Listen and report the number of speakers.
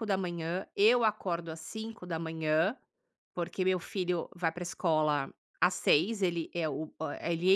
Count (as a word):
one